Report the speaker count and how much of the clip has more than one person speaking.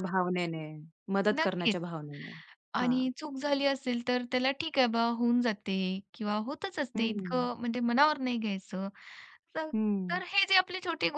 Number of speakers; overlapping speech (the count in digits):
2, about 11%